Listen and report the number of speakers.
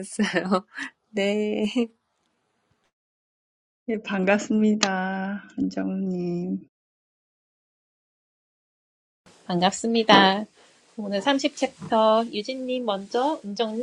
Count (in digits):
3